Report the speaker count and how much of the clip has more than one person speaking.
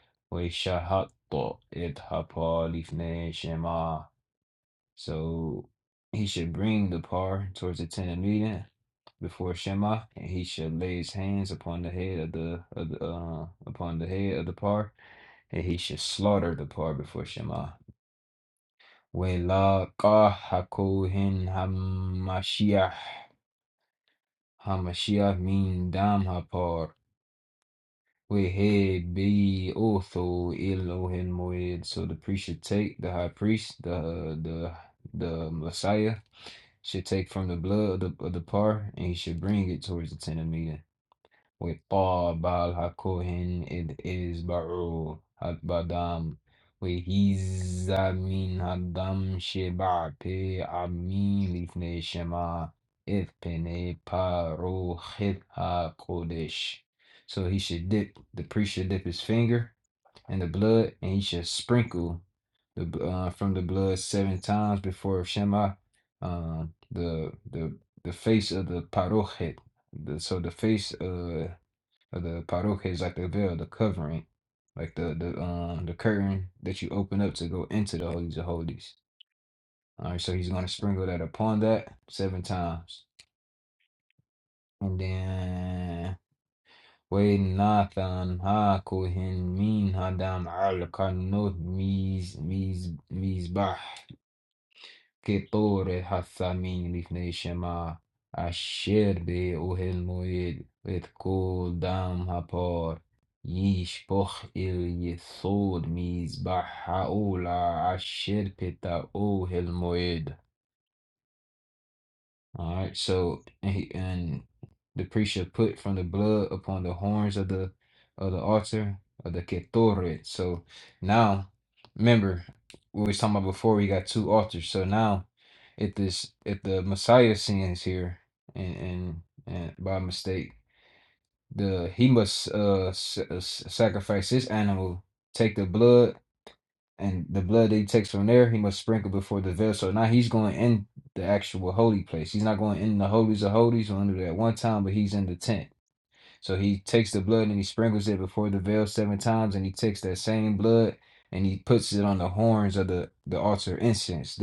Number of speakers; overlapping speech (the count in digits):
1, no overlap